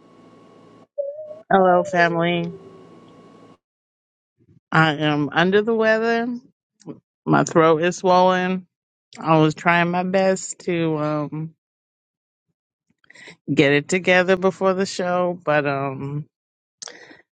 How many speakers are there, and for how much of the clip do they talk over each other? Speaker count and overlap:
1, no overlap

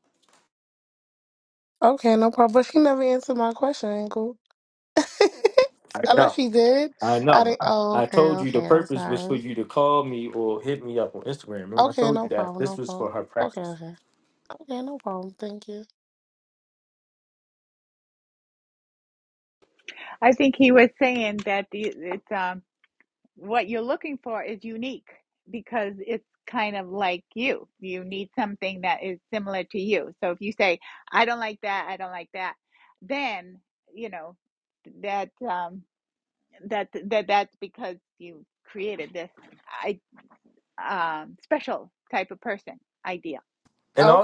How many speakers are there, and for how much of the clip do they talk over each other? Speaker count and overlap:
3, about 9%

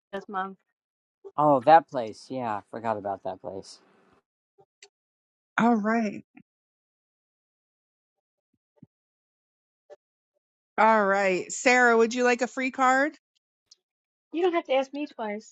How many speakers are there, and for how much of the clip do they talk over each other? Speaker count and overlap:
3, no overlap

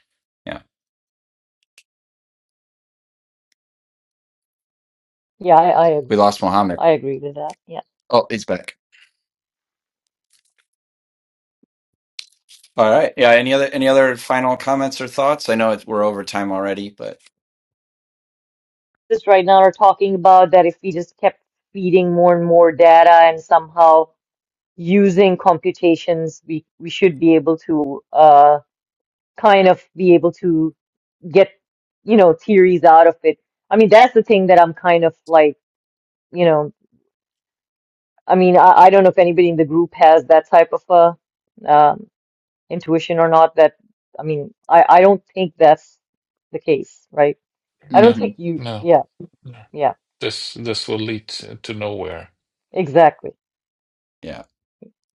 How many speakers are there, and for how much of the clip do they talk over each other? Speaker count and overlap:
3, about 1%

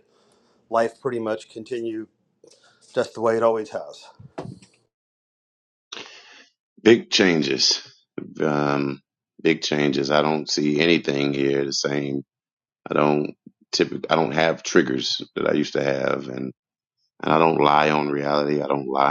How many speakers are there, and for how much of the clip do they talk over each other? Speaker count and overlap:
2, no overlap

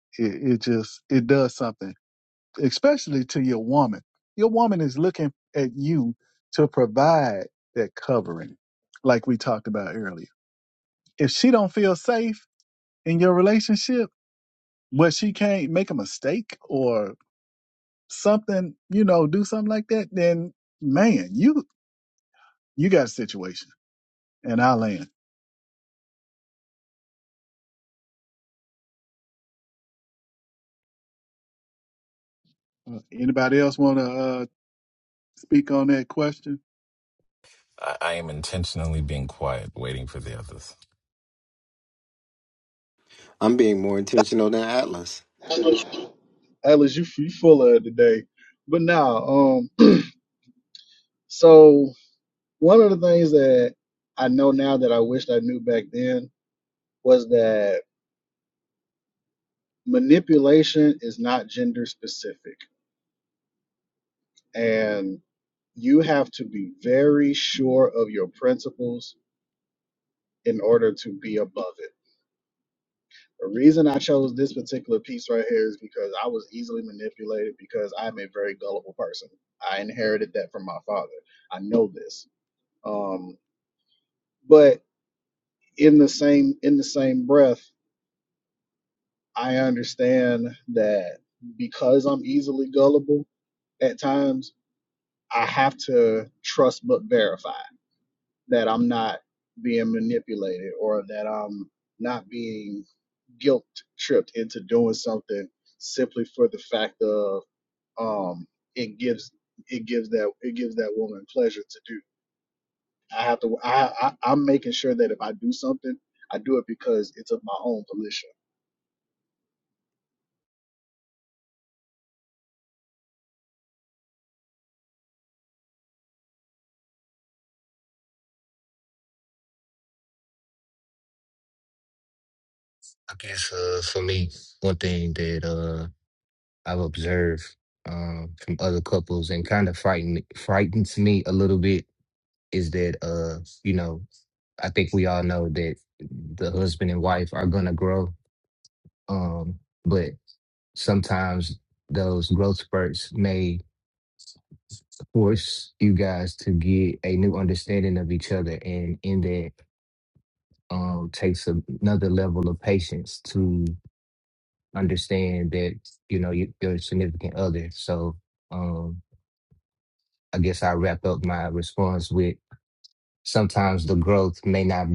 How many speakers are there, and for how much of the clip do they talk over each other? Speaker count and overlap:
5, no overlap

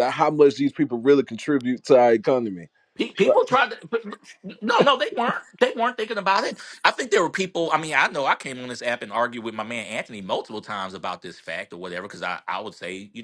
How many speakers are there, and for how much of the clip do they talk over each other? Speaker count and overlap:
2, about 2%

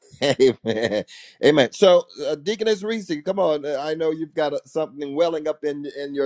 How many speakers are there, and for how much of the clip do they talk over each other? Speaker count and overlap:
1, no overlap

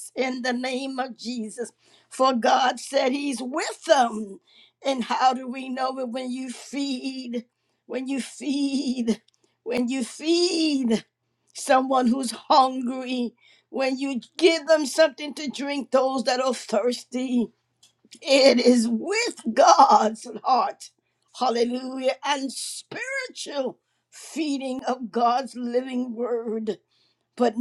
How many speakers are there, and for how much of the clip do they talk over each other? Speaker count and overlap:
1, no overlap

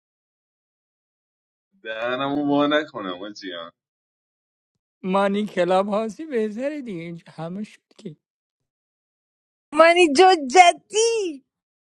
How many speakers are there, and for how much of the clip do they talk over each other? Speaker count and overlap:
3, no overlap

